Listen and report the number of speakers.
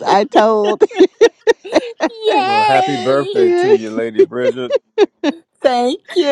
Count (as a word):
three